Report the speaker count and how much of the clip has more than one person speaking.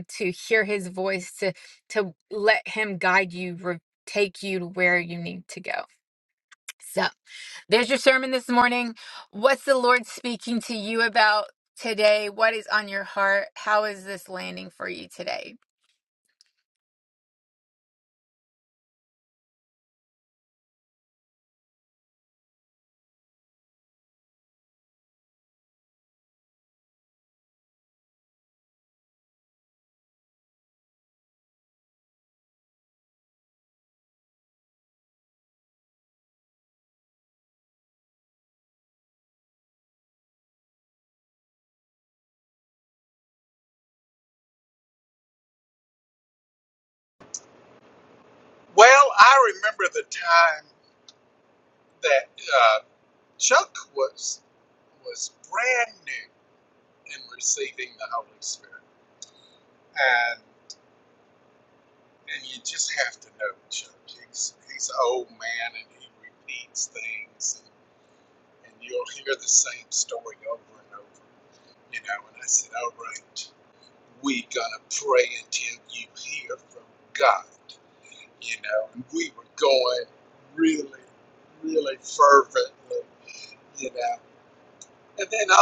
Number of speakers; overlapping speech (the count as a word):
two, no overlap